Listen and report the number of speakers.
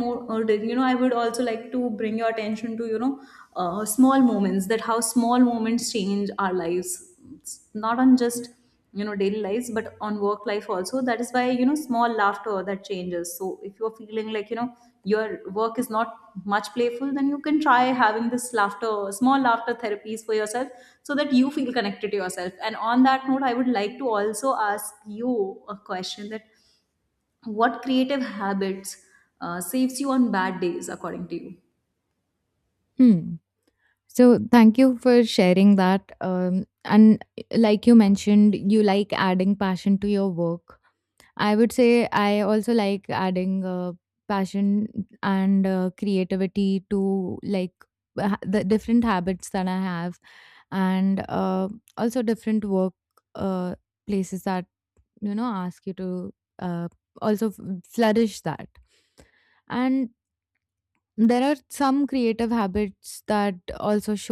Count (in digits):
2